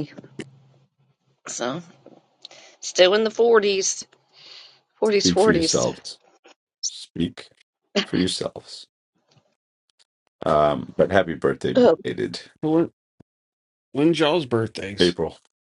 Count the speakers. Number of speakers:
three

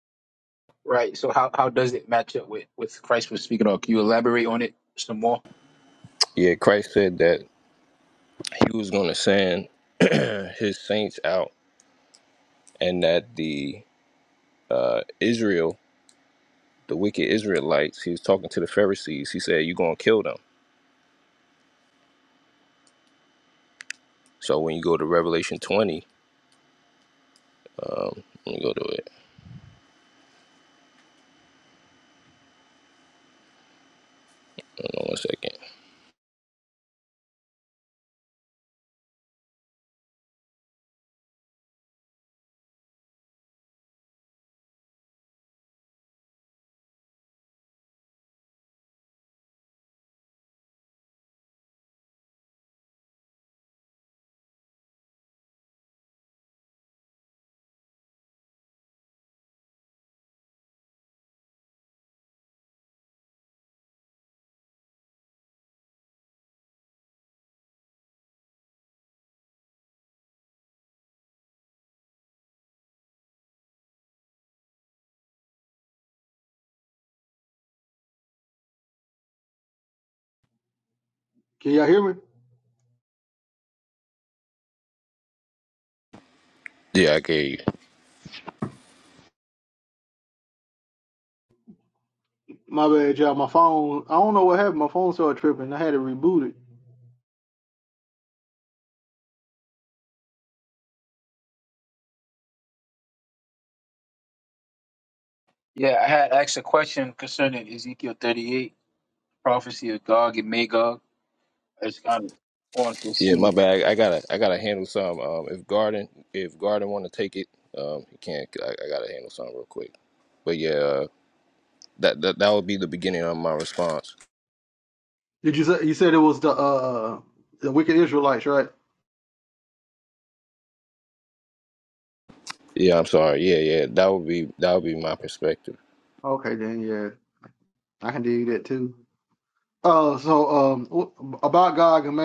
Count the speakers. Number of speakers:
three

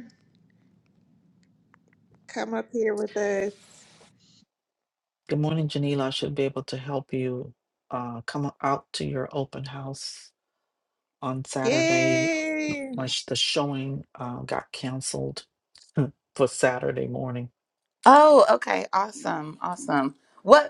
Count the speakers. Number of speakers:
three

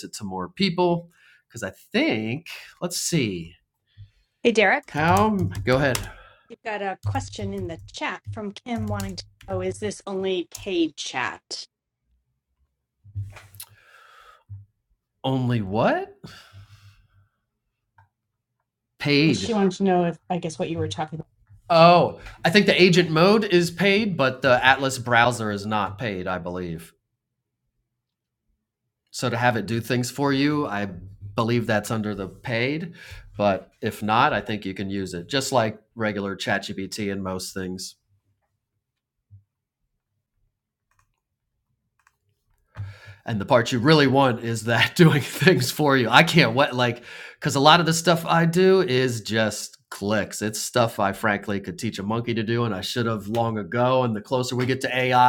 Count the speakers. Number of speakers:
two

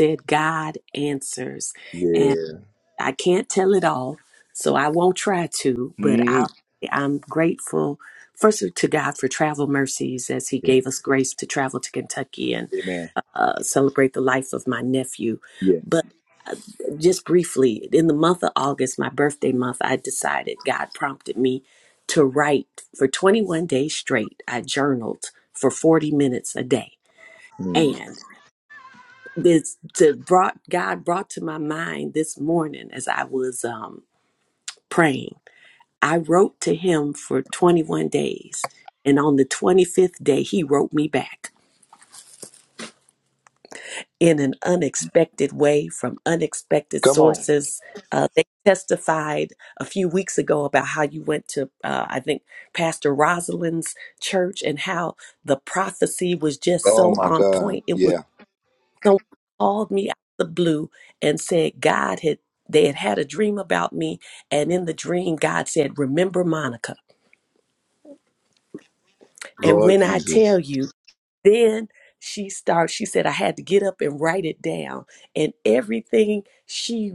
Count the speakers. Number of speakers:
two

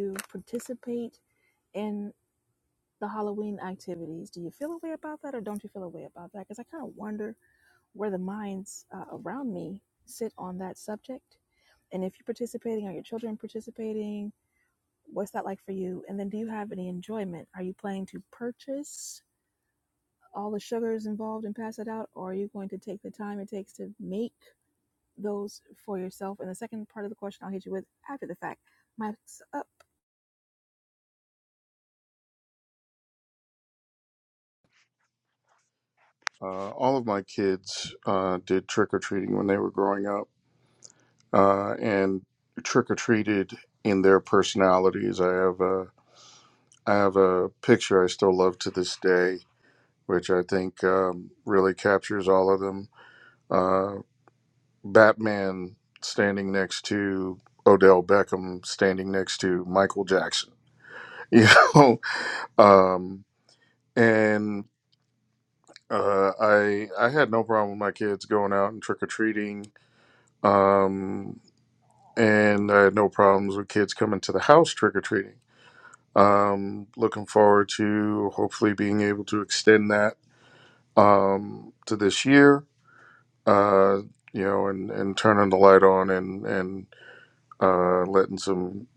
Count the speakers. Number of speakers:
two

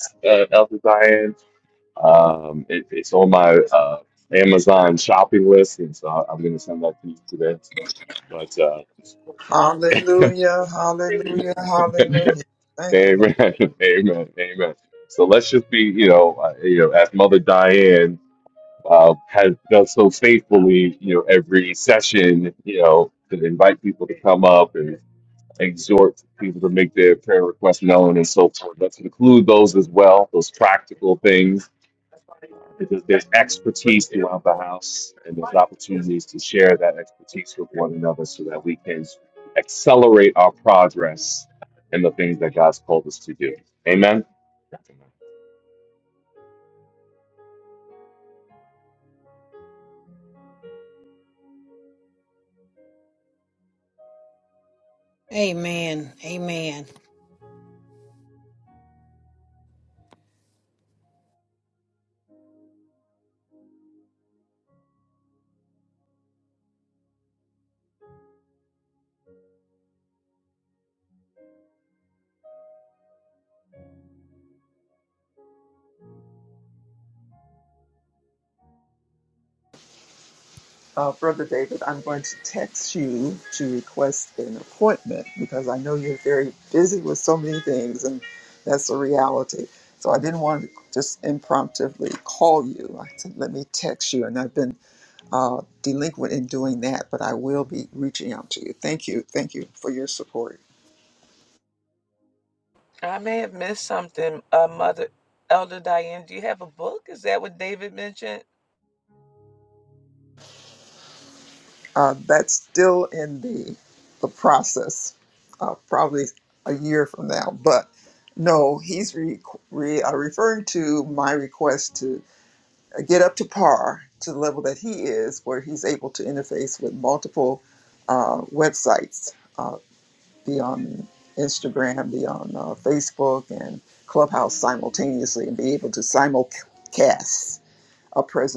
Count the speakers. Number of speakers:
four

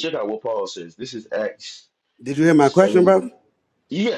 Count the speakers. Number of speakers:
two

